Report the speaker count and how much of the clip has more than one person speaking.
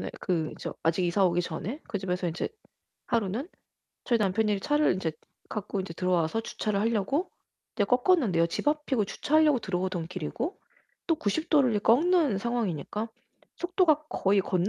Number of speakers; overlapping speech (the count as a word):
one, no overlap